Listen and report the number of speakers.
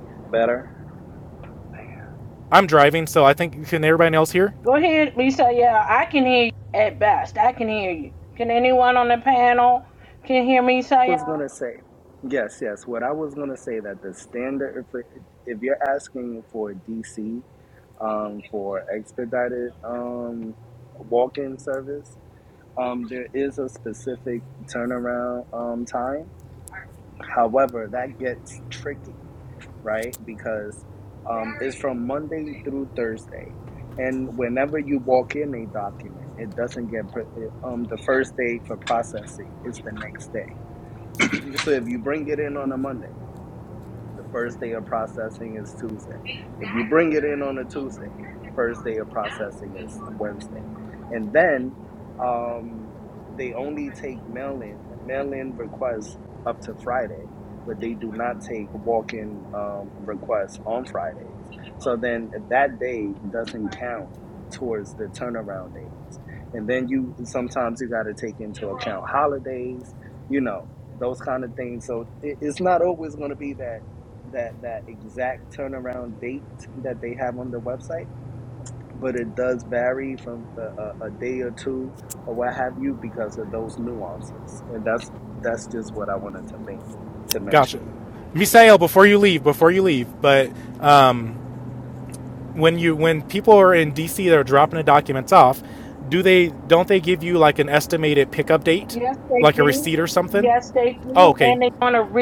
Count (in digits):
3